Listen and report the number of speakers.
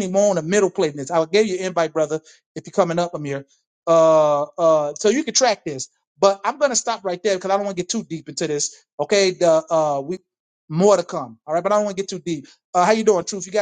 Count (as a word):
one